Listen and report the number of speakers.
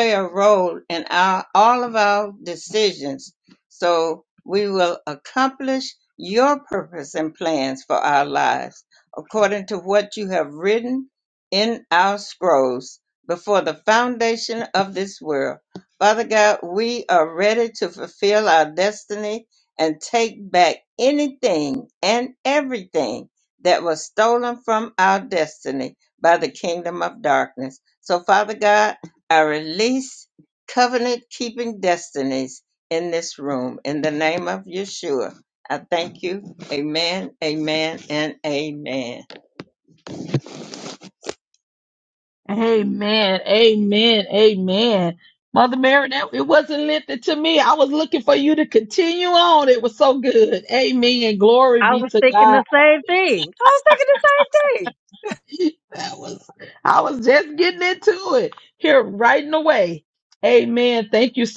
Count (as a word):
three